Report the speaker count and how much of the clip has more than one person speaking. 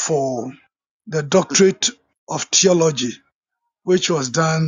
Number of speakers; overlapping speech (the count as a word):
one, no overlap